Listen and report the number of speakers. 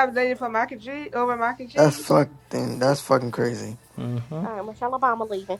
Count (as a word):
three